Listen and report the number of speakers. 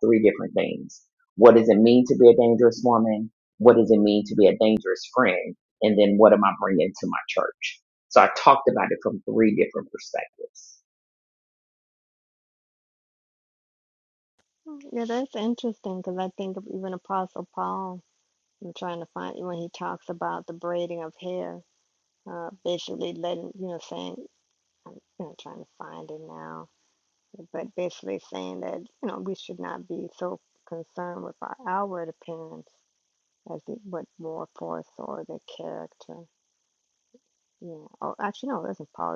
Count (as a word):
two